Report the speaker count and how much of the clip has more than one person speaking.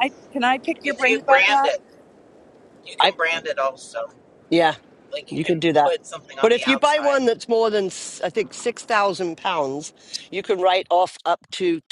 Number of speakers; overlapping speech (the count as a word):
three, about 21%